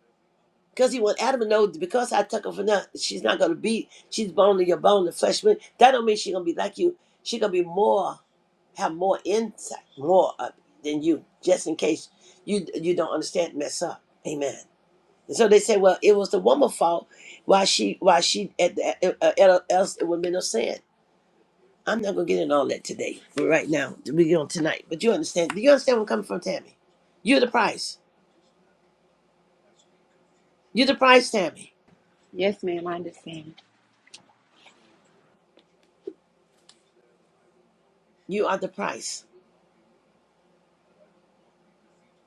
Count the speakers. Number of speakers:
2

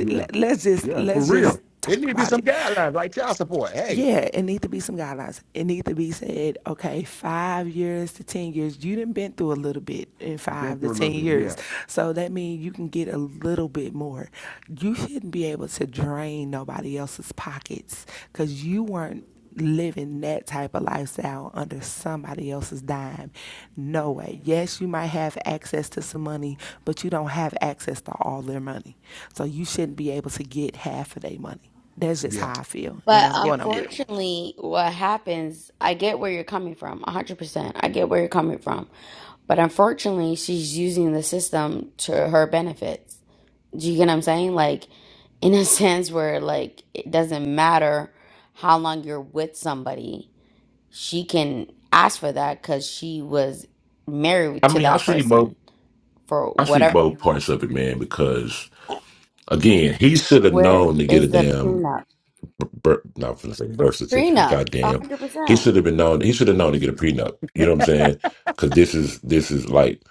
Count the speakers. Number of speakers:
4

